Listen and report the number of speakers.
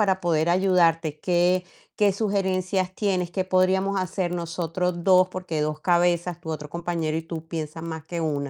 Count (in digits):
1